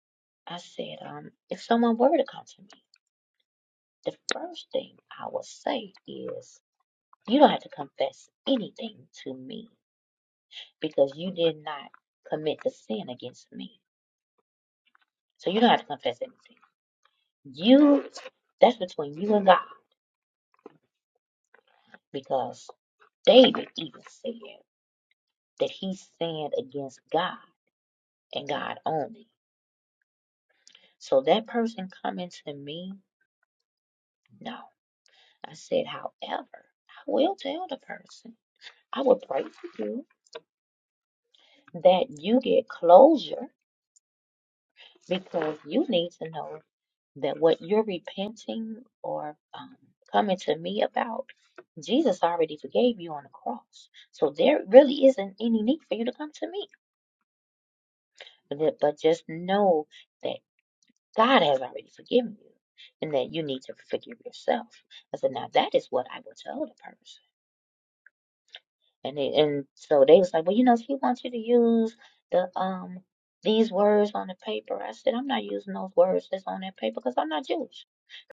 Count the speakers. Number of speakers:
one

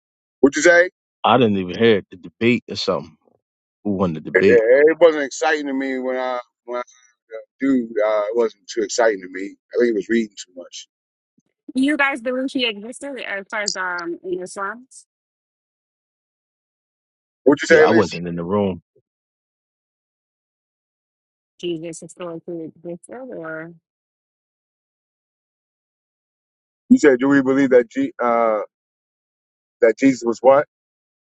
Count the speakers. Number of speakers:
three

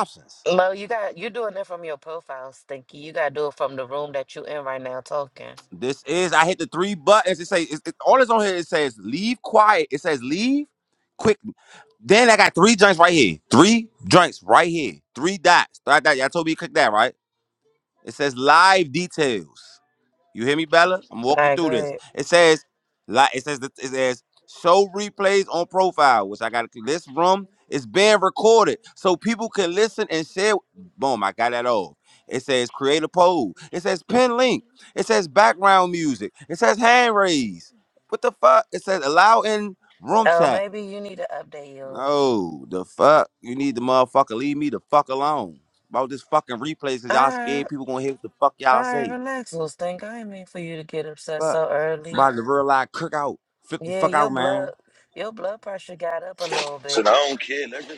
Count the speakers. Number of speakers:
three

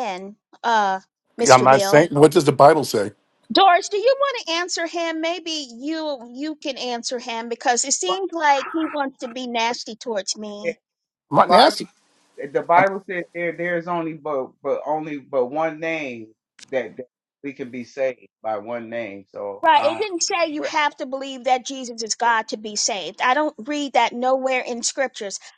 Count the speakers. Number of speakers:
three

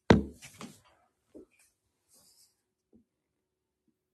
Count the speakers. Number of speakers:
zero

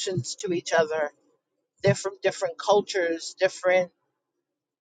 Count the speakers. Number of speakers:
one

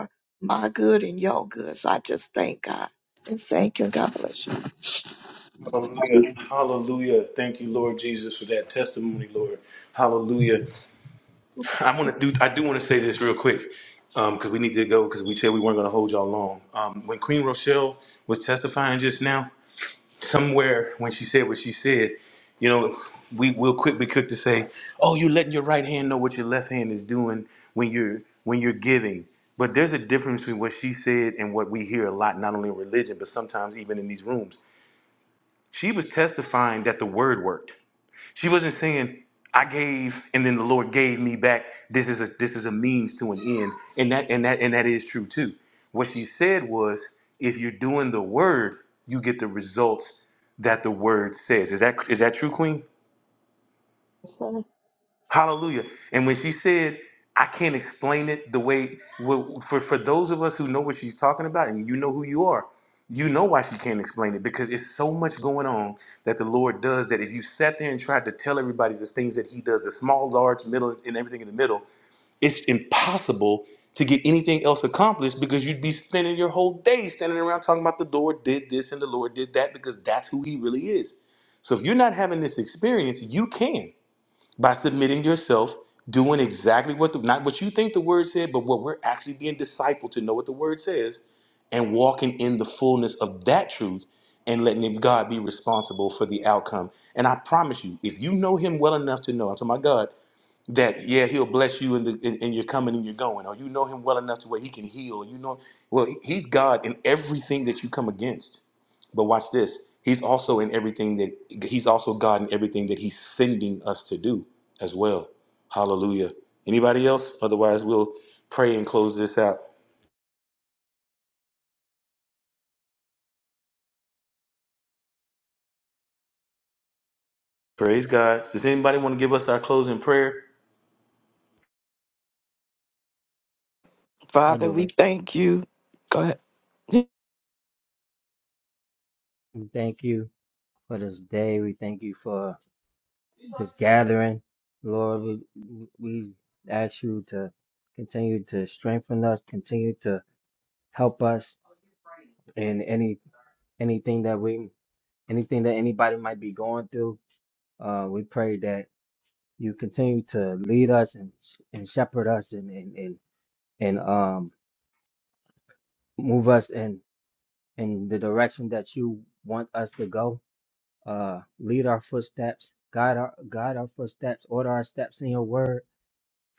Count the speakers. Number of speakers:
four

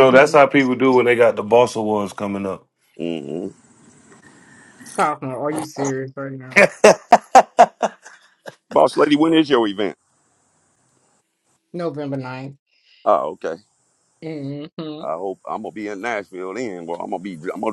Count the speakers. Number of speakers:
three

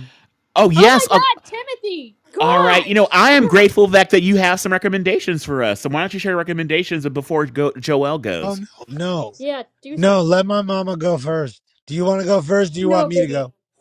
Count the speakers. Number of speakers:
three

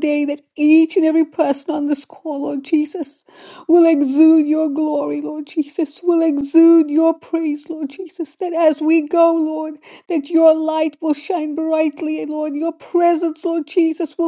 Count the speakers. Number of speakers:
one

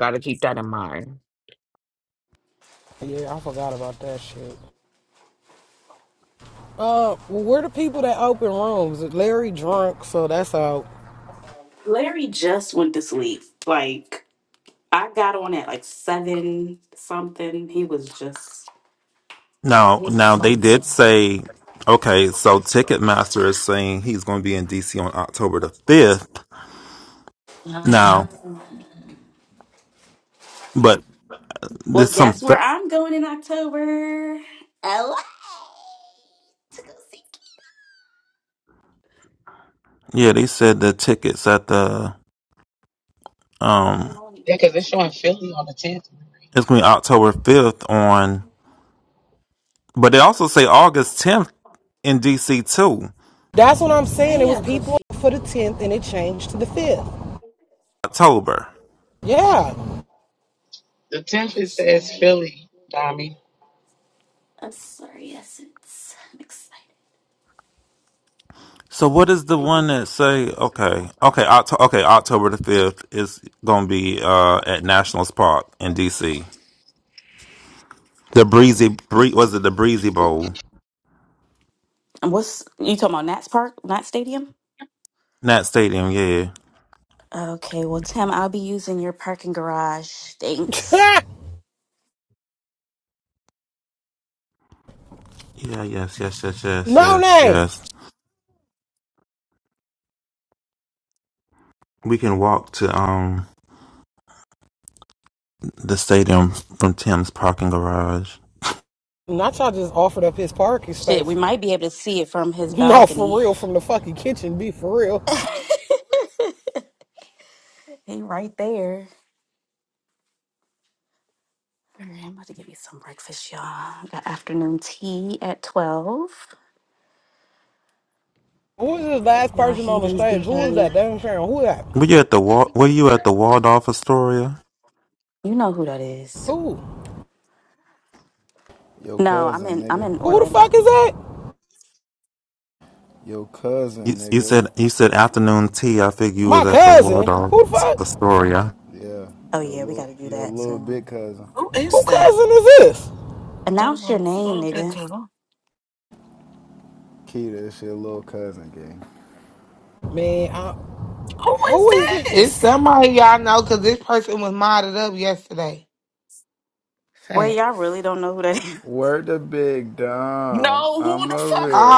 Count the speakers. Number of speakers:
seven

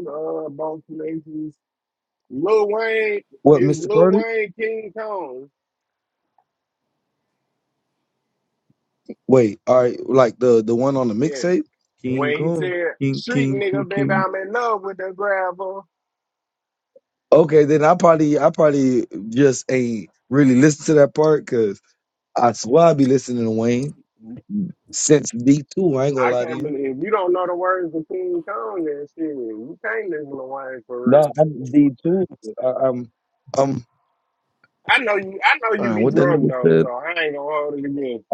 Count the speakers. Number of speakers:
two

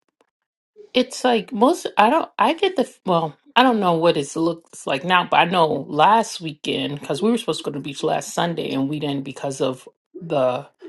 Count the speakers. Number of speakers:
one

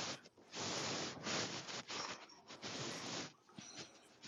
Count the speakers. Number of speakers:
zero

